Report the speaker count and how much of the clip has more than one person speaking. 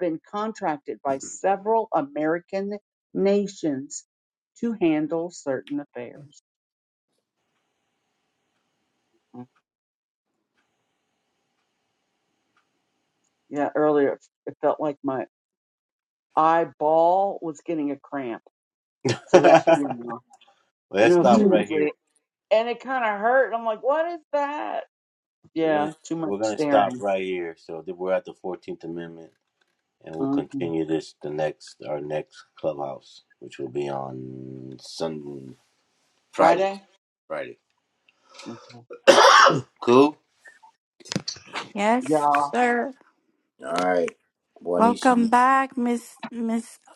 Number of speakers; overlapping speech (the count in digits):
3, about 8%